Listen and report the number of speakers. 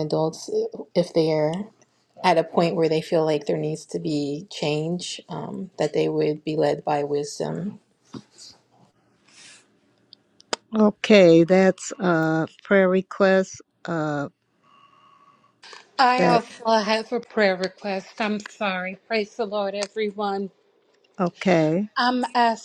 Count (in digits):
3